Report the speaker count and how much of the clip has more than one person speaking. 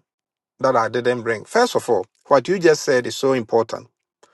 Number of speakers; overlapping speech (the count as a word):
one, no overlap